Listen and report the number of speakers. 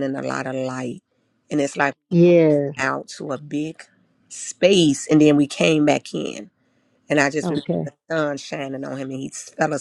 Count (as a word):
two